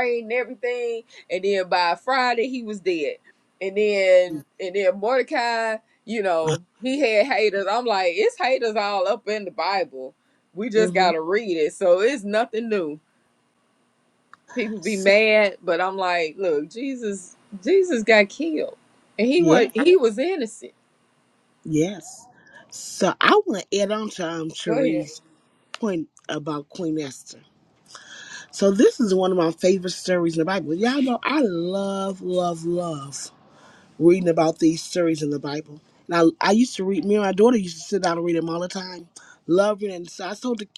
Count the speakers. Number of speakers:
2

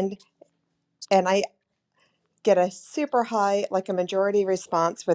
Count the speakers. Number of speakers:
1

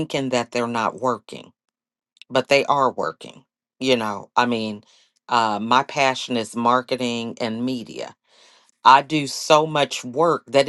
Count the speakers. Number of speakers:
1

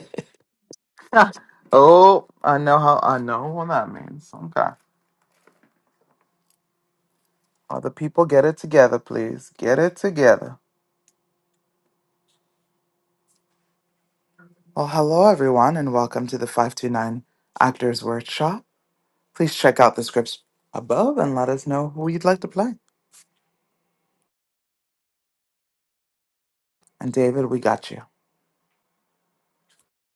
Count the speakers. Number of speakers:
1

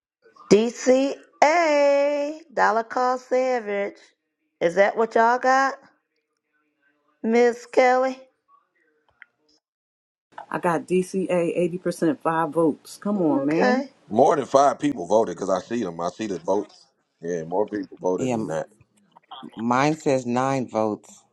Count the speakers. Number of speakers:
4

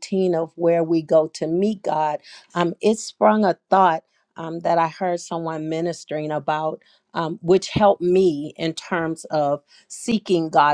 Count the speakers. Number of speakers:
1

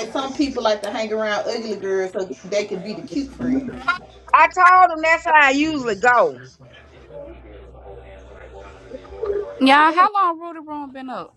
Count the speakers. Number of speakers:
3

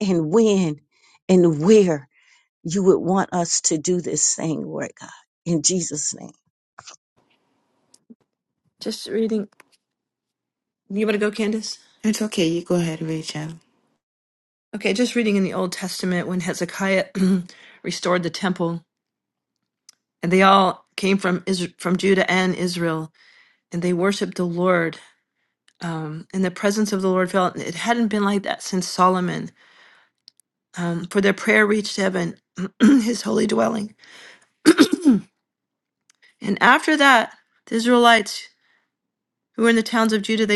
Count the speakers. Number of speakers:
3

